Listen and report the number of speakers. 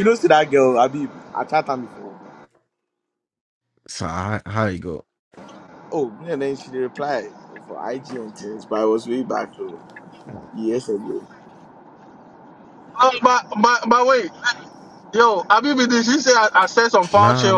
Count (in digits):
3